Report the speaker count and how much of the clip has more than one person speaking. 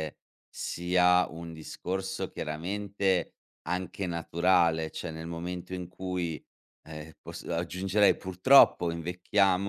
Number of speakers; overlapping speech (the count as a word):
one, no overlap